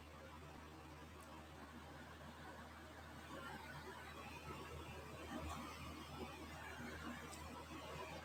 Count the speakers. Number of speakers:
0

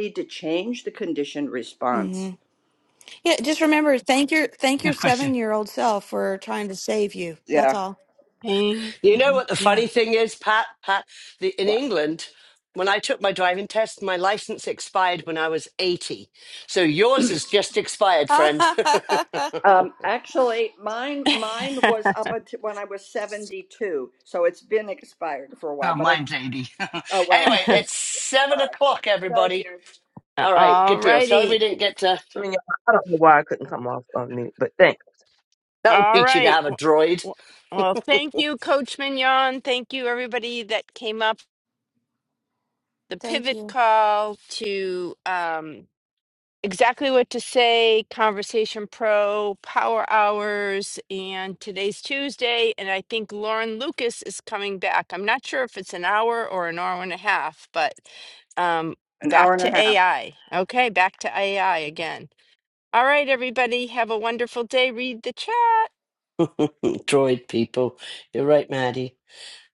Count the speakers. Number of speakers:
5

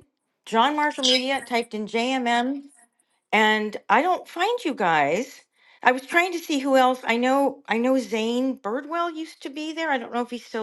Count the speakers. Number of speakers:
1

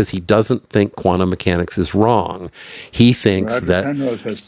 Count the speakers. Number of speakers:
2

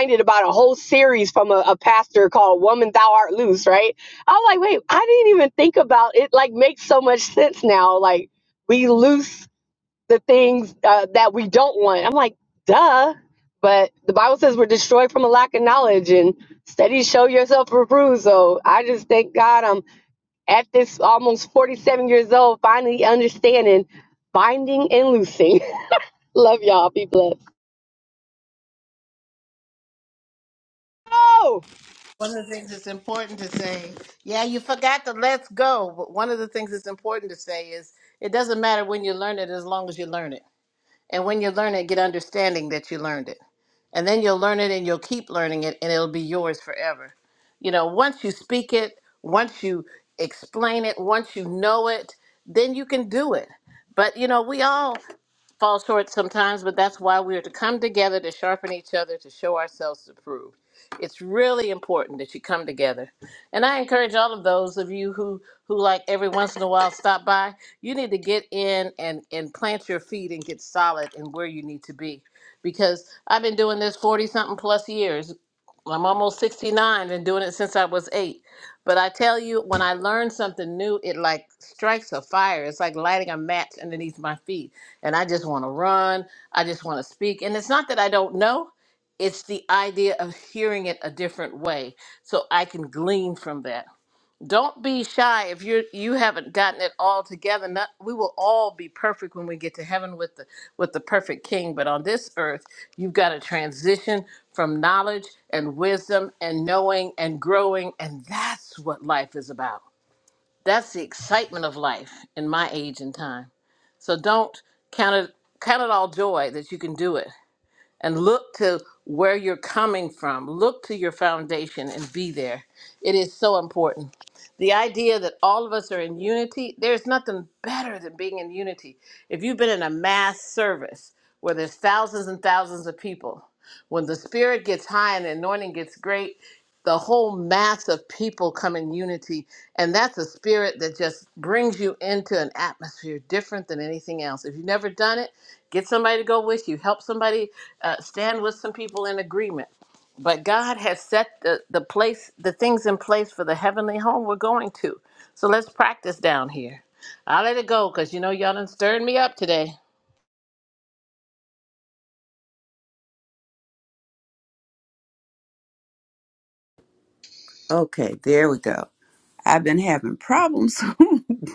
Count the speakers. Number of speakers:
3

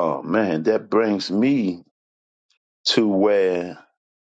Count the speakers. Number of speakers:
1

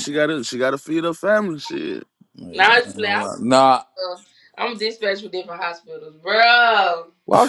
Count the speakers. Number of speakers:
3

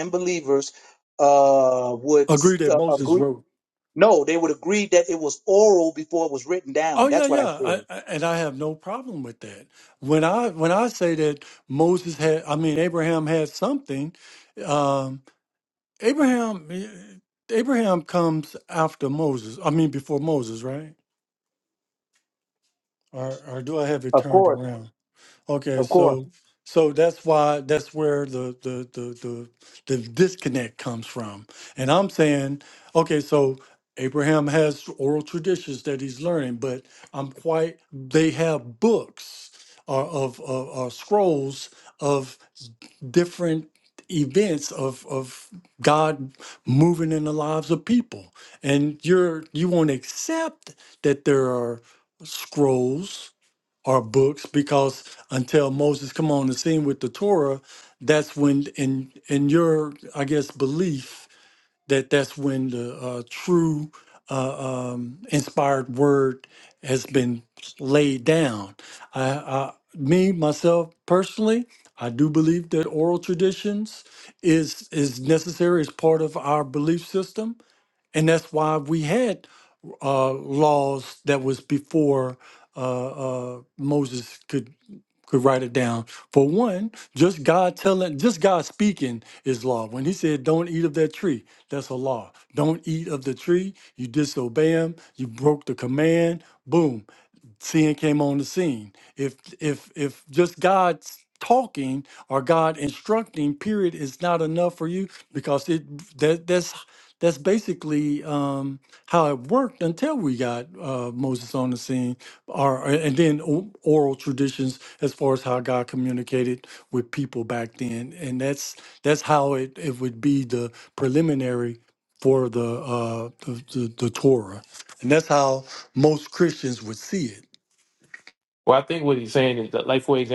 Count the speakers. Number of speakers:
3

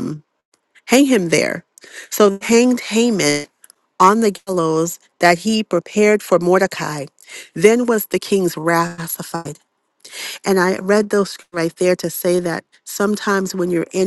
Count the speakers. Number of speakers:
1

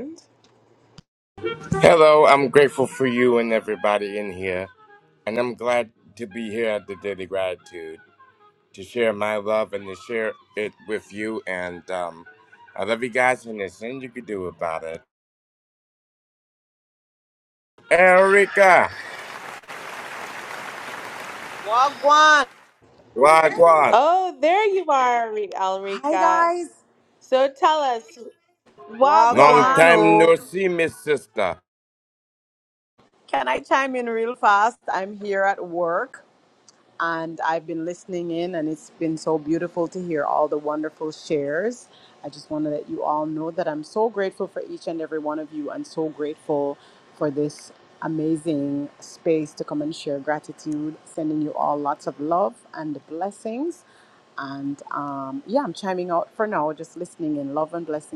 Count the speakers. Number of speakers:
3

